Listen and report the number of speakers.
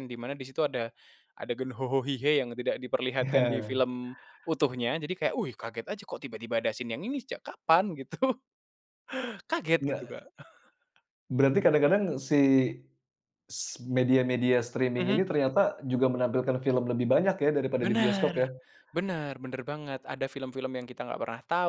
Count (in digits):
2